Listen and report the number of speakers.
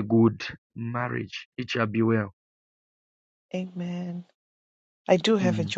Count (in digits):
2